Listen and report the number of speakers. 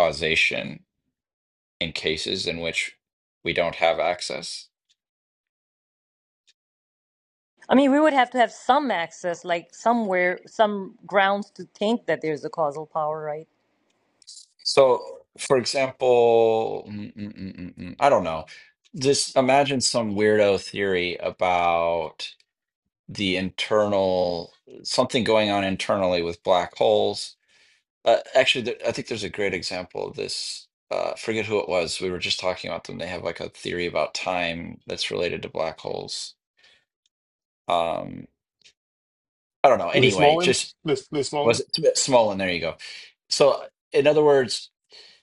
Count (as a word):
three